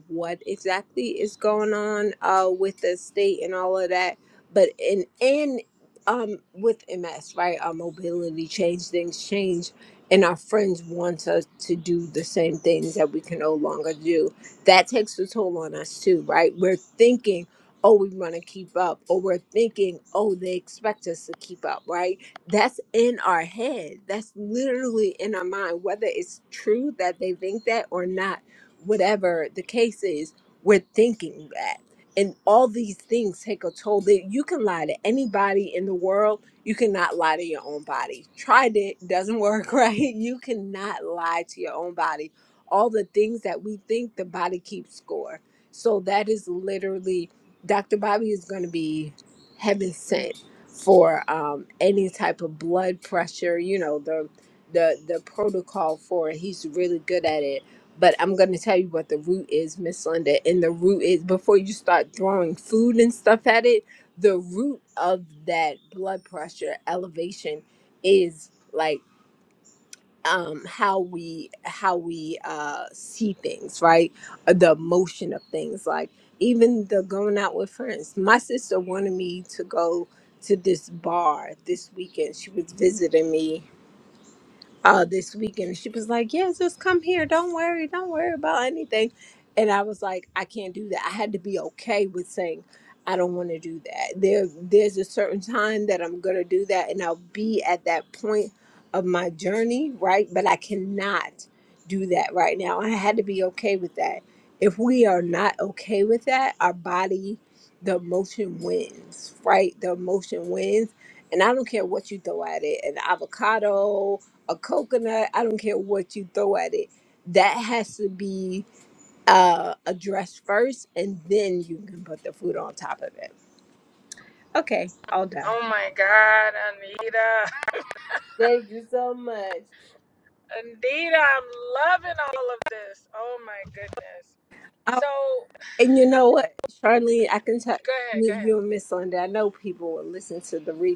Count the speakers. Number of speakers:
3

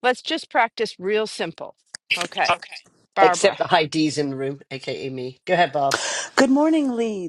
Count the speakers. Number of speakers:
3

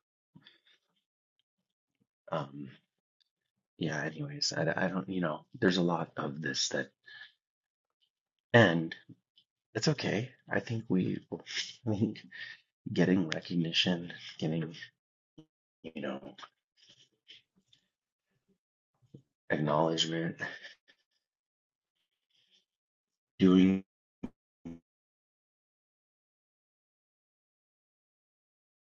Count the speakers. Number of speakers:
1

